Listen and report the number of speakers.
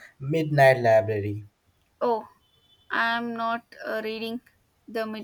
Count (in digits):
2